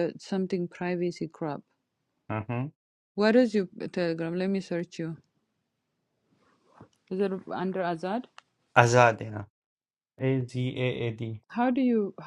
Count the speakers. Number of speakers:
2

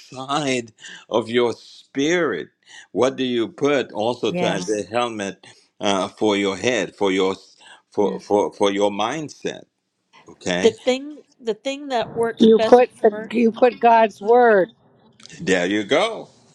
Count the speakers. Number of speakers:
3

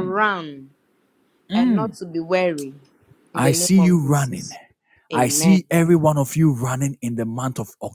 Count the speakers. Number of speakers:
2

